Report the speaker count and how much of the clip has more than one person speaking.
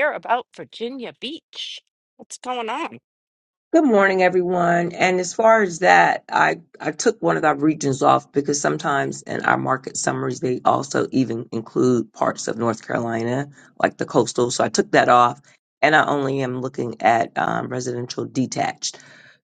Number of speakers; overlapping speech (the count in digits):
2, no overlap